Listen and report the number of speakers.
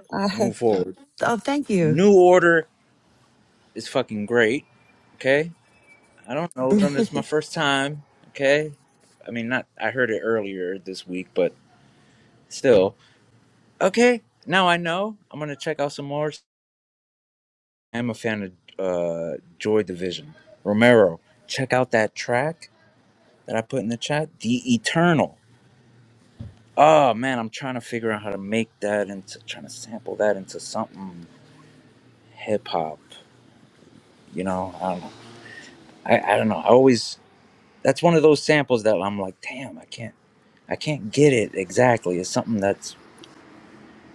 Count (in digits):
2